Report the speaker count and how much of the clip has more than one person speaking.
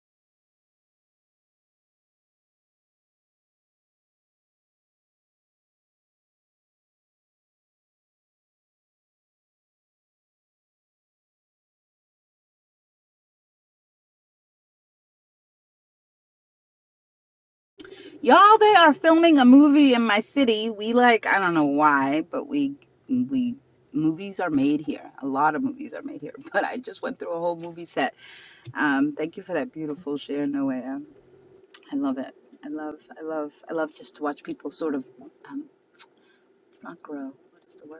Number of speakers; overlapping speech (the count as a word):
one, no overlap